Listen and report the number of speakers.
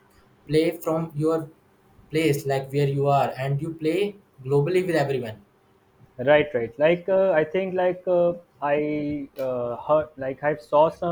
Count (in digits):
2